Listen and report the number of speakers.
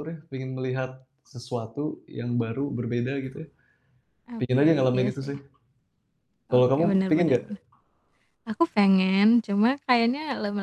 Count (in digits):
2